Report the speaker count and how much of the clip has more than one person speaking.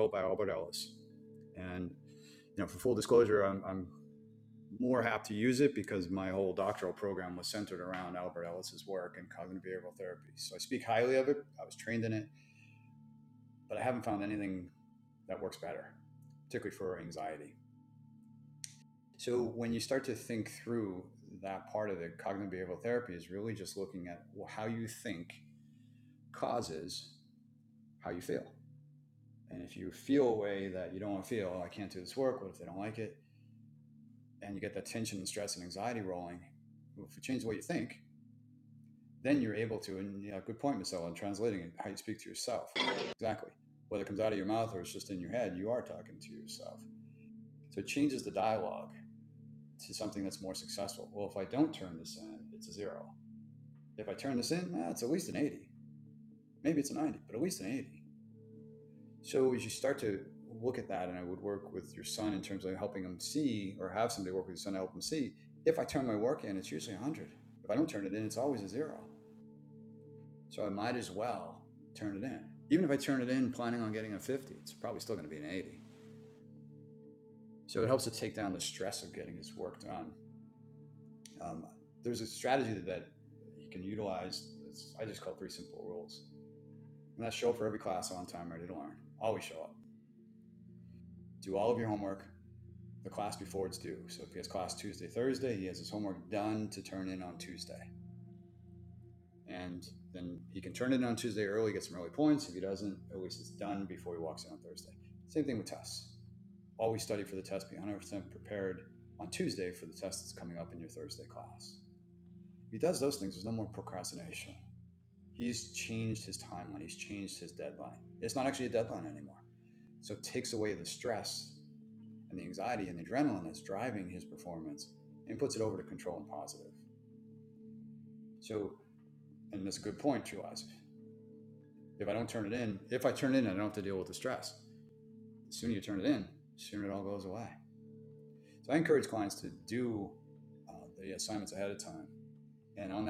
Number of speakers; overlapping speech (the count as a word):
one, no overlap